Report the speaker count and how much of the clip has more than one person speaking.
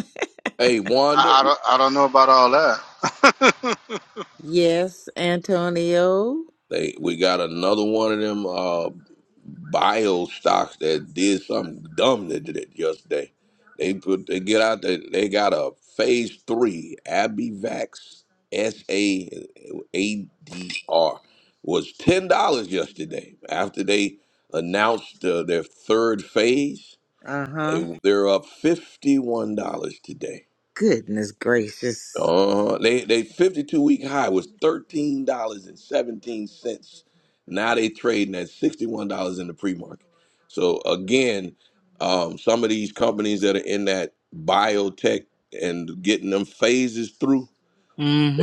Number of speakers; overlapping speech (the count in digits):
3, about 1%